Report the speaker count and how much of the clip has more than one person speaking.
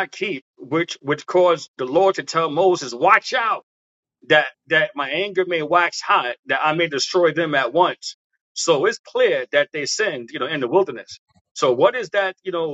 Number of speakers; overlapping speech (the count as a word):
one, no overlap